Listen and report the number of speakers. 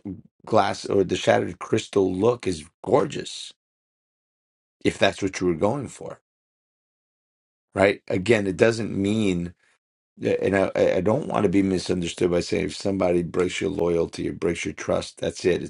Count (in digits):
1